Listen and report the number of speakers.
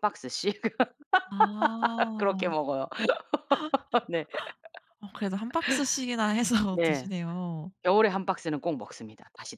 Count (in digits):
2